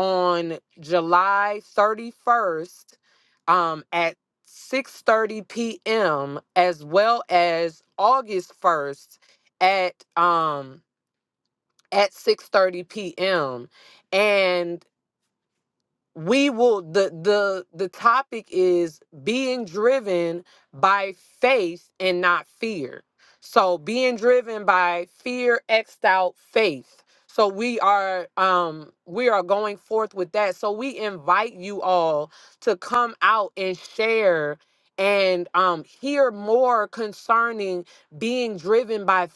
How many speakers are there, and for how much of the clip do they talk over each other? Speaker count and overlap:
one, no overlap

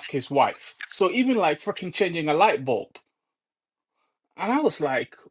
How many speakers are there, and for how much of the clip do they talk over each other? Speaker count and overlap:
one, no overlap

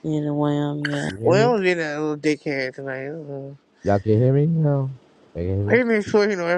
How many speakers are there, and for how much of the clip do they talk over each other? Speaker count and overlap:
three, about 6%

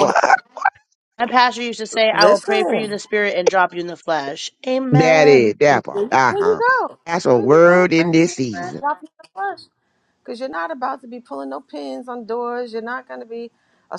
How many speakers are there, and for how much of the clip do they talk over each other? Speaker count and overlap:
three, about 26%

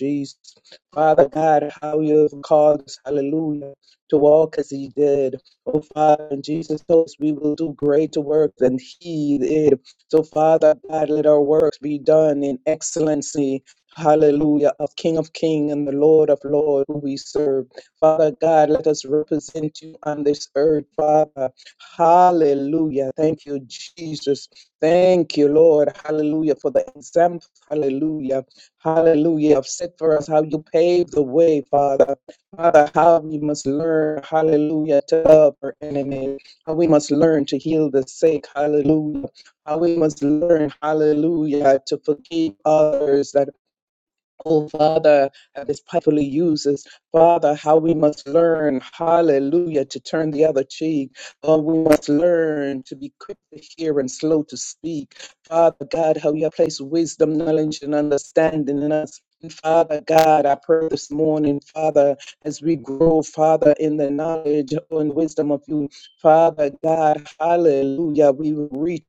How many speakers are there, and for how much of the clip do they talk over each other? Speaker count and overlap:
one, no overlap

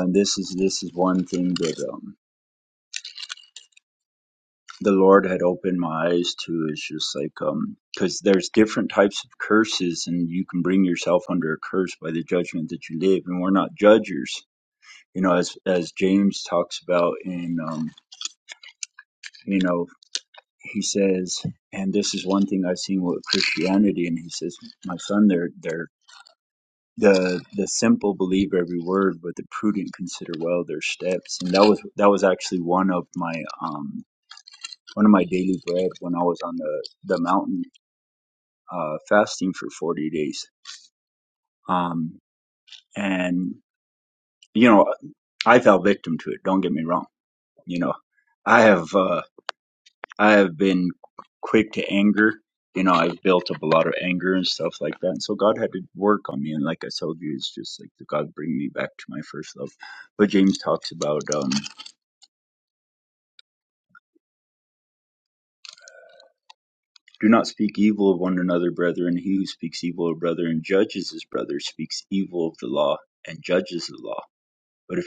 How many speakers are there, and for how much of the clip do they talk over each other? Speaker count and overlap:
one, no overlap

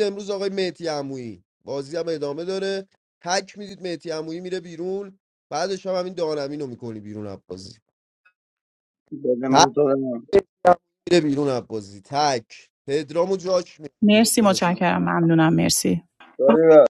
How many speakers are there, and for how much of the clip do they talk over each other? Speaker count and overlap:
three, about 5%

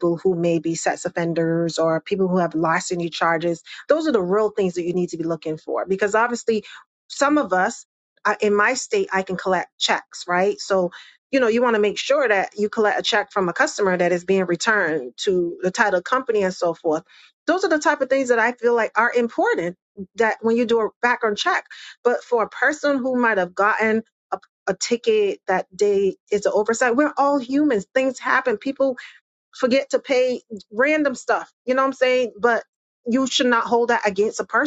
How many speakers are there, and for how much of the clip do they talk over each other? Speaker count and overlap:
one, no overlap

